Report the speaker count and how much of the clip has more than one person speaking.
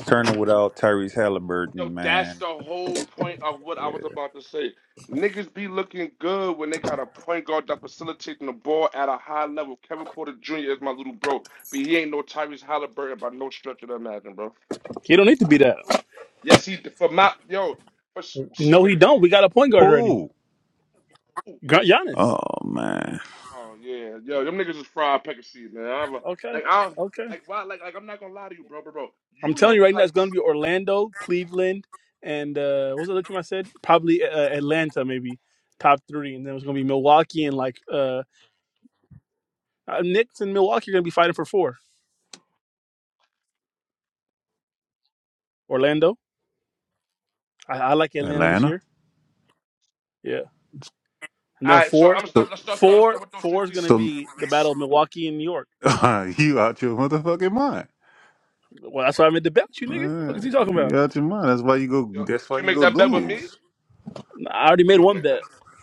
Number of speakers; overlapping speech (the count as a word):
three, about 12%